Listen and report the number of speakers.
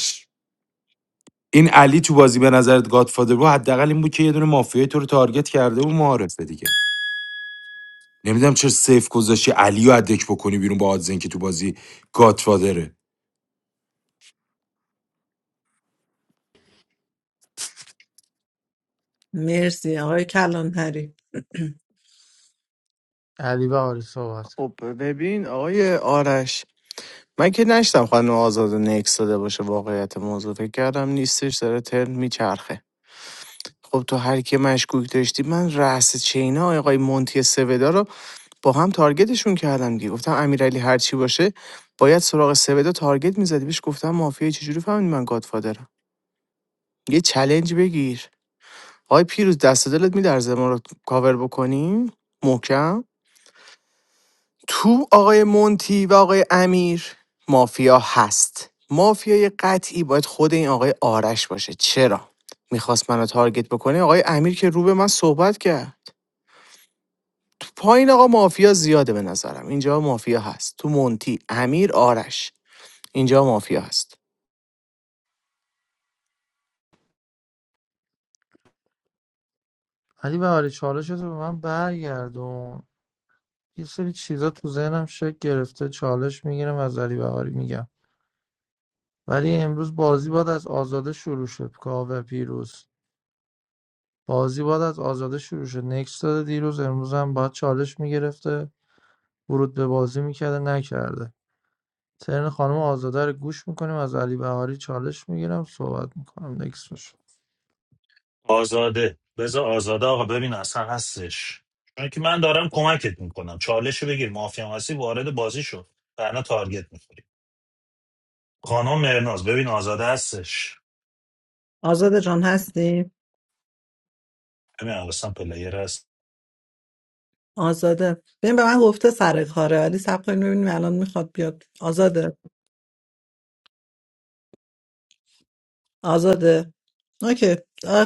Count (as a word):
five